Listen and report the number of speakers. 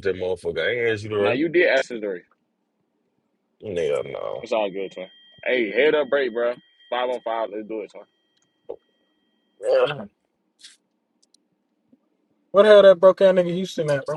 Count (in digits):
3